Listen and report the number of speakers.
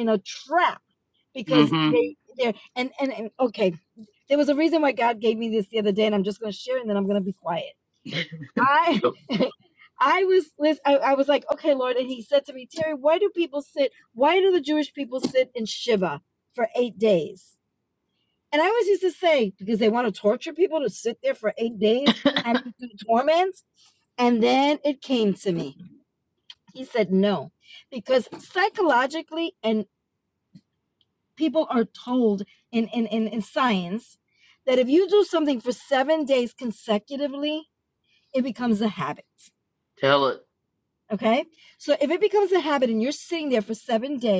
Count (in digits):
2